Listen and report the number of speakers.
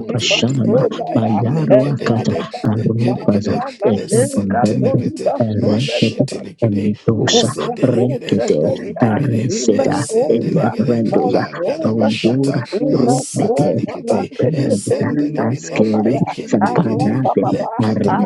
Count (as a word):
three